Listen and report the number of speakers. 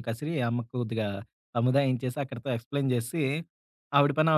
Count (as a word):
one